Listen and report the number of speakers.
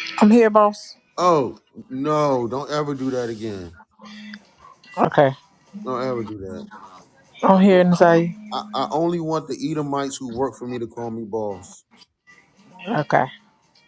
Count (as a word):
two